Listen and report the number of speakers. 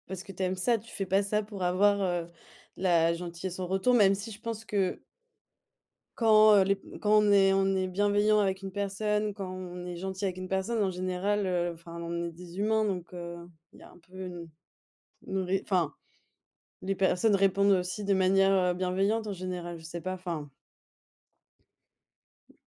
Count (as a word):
one